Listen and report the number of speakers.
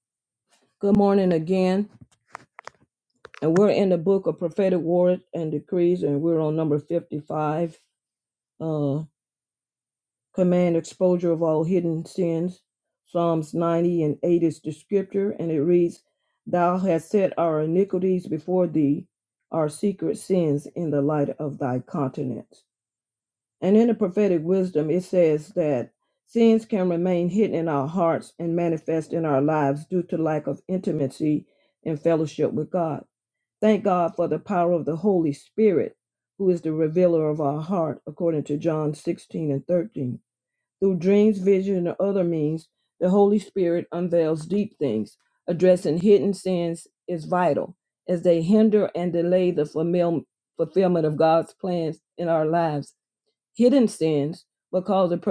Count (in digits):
1